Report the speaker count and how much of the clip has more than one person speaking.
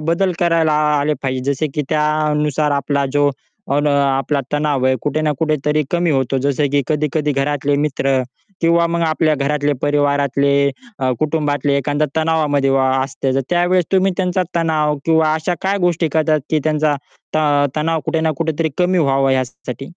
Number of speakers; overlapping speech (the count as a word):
one, no overlap